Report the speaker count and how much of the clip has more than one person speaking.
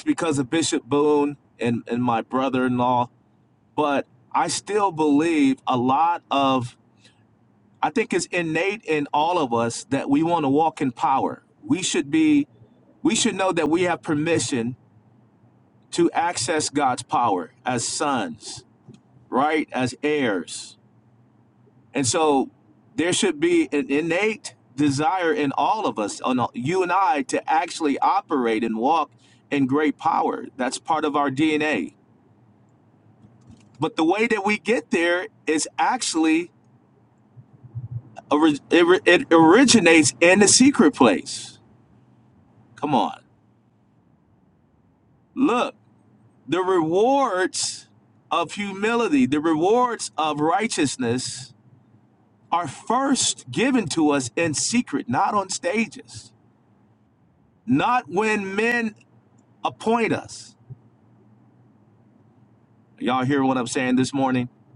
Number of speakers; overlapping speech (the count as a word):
one, no overlap